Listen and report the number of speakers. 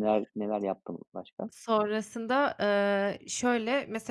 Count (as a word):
two